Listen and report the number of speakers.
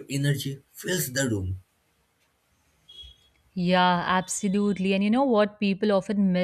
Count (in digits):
2